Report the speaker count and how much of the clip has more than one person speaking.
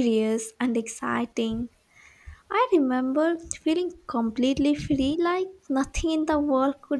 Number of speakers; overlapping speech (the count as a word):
one, no overlap